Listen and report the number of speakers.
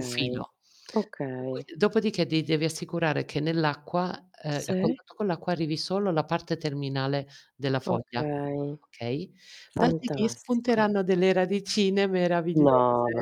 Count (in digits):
2